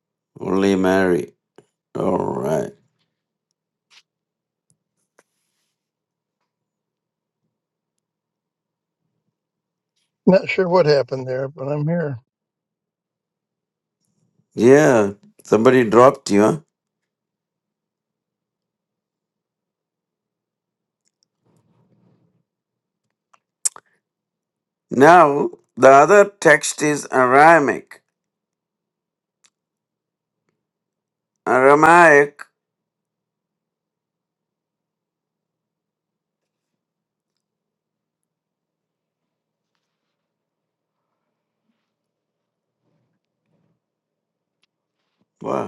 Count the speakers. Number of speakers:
two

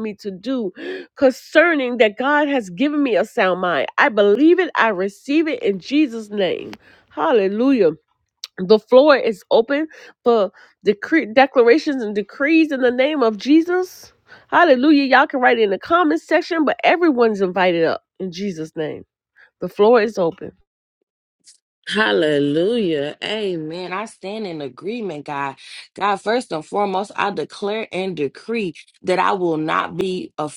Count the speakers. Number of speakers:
two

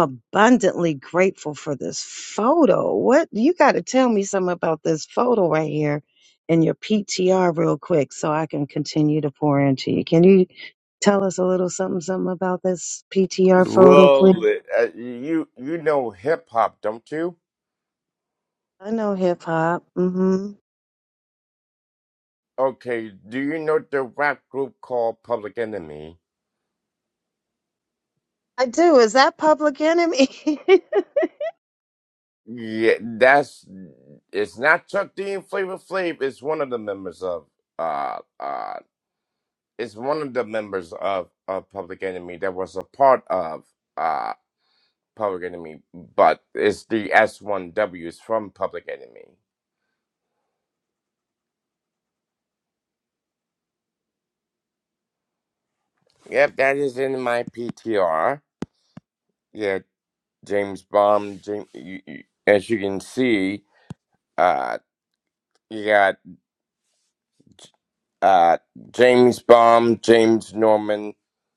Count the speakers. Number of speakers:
two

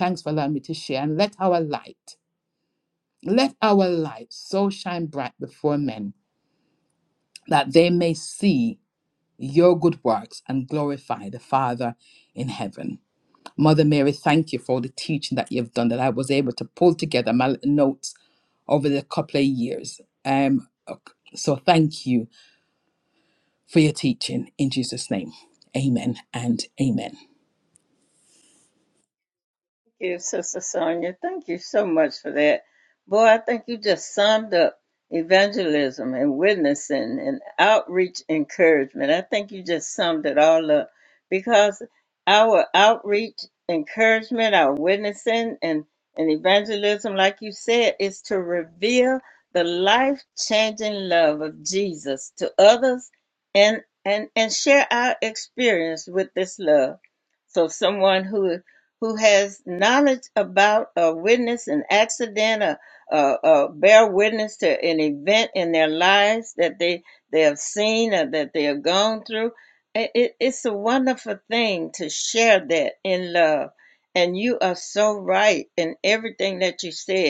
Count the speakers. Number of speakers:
two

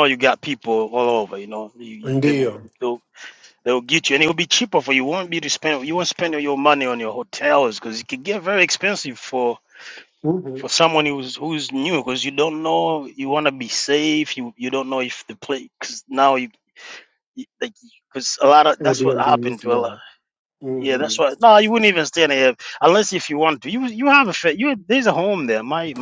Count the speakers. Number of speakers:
two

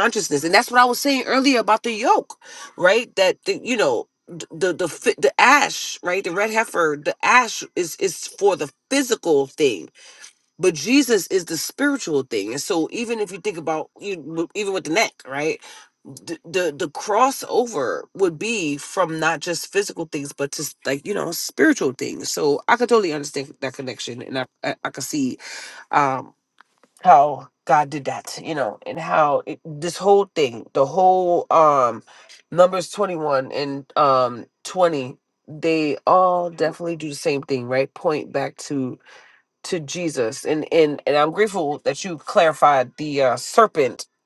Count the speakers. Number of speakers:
one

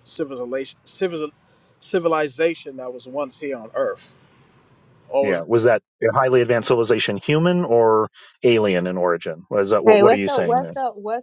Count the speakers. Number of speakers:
three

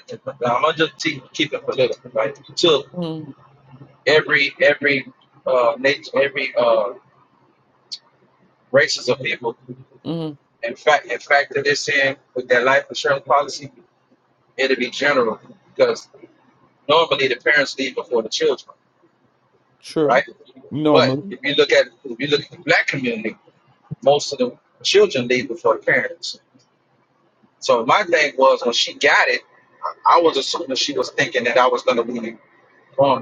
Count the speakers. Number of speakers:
two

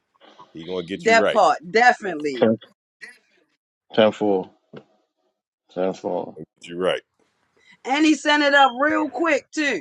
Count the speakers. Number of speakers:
three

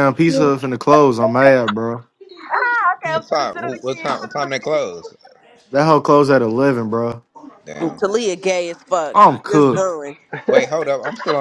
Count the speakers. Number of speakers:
four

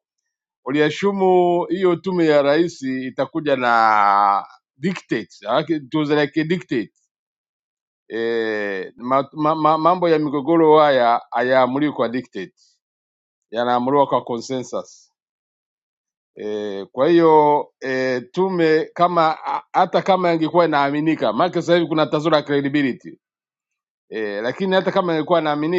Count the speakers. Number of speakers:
one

